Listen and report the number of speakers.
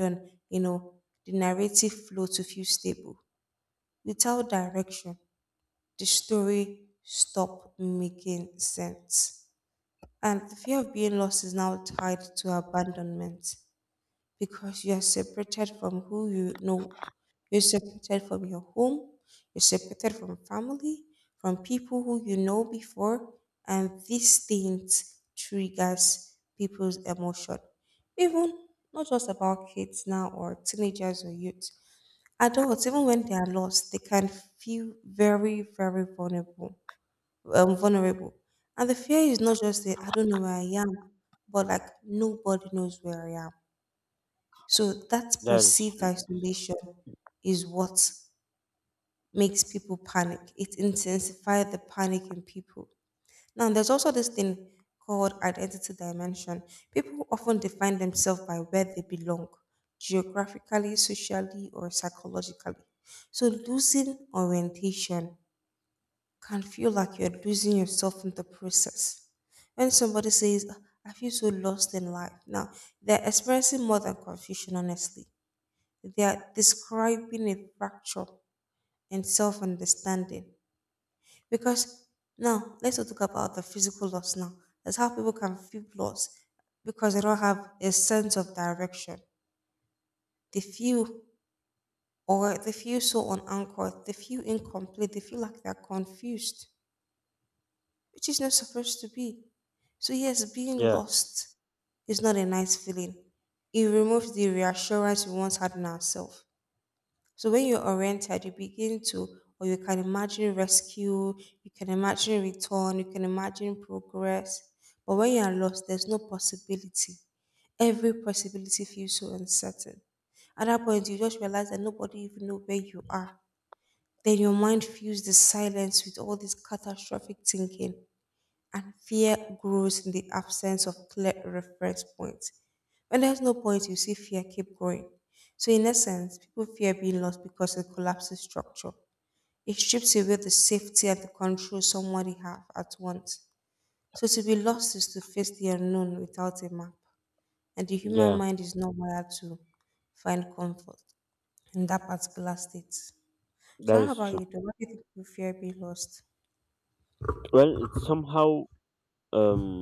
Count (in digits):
2